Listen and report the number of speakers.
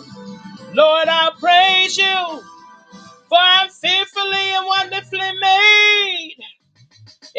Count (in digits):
1